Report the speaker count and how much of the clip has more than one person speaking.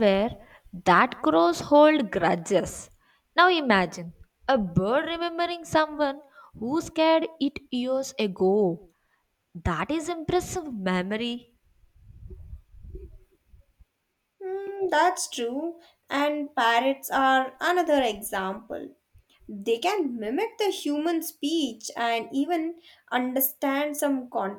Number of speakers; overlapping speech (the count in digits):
2, no overlap